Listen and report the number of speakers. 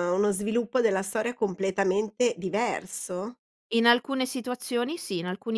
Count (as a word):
two